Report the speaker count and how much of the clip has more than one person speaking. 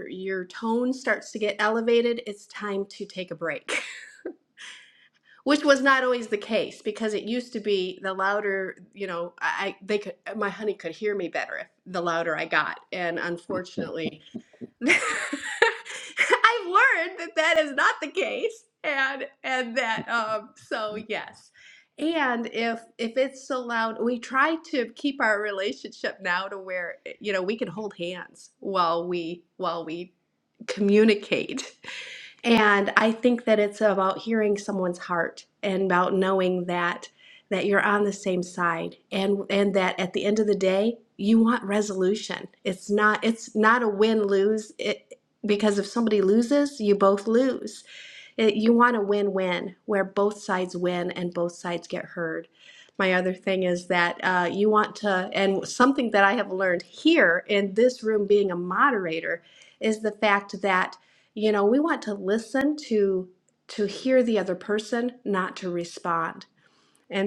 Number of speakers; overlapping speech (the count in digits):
1, no overlap